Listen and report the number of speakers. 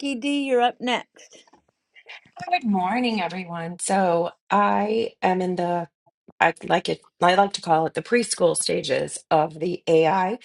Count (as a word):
two